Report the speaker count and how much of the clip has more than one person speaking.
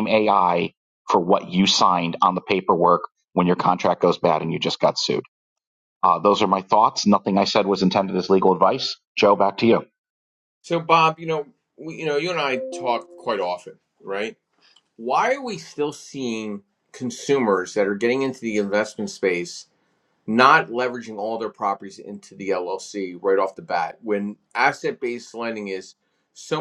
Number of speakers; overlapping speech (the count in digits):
2, no overlap